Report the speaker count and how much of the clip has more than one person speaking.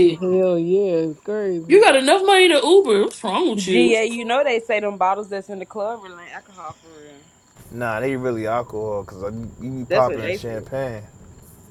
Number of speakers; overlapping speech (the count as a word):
four, about 11%